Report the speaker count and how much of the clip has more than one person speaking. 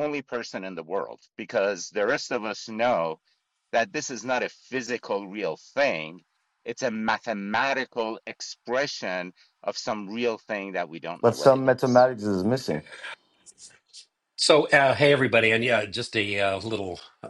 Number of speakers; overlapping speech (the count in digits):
3, about 3%